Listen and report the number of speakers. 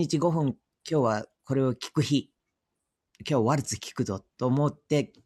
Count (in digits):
1